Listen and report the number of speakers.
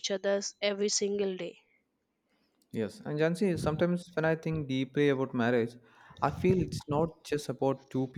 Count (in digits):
2